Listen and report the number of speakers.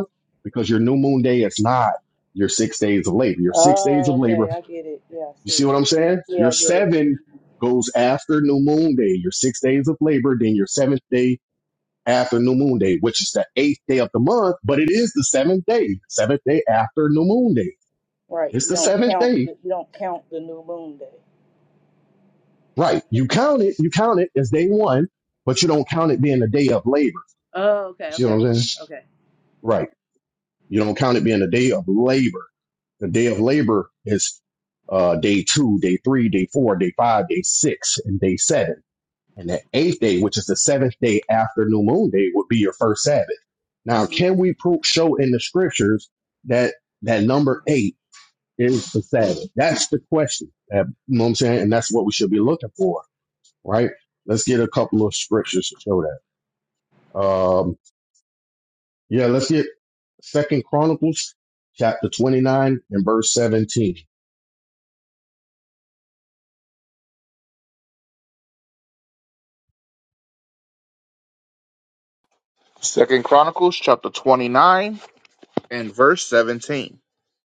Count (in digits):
3